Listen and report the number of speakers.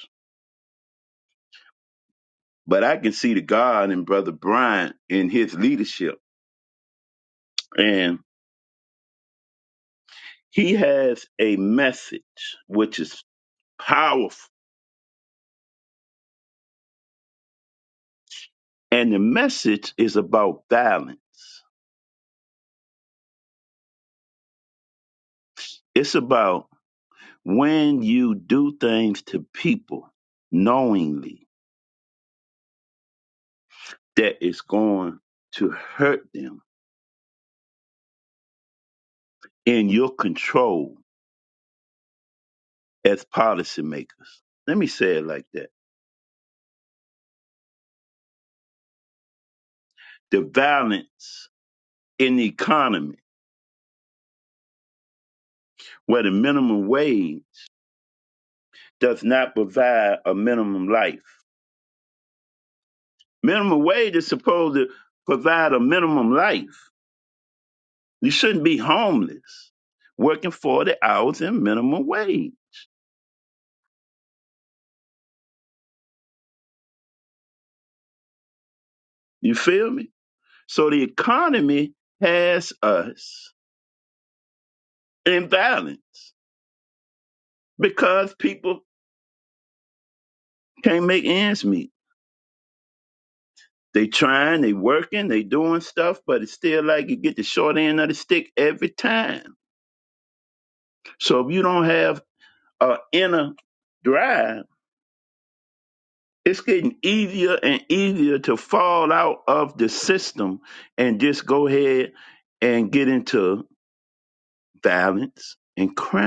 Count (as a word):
one